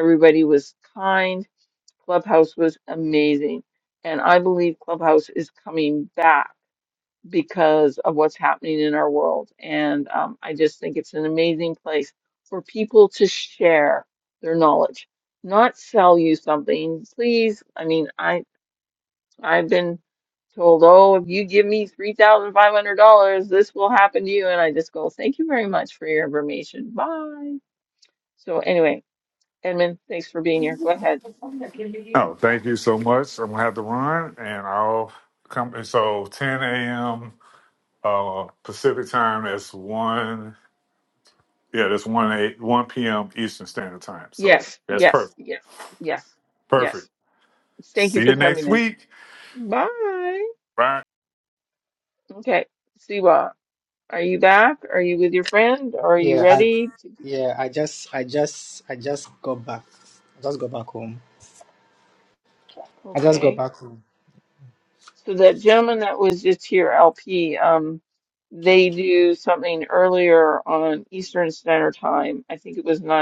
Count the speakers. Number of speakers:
three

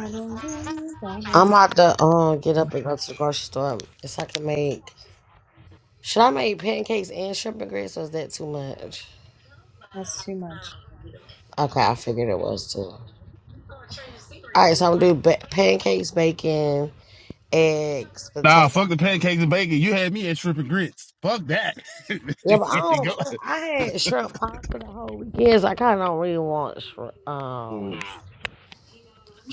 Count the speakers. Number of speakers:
three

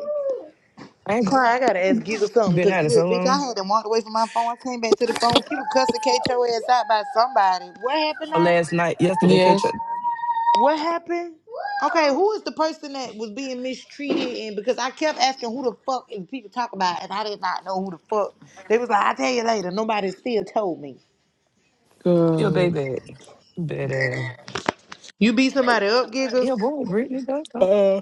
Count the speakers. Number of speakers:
three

